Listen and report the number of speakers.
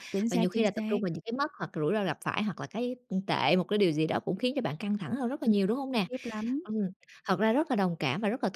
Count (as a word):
two